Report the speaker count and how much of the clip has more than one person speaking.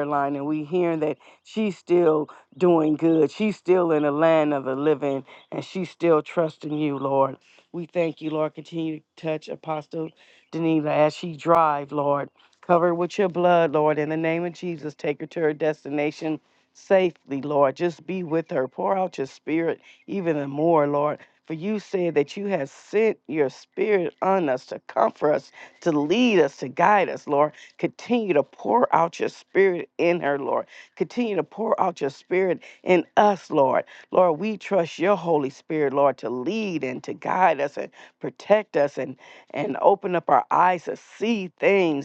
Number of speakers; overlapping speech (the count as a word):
one, no overlap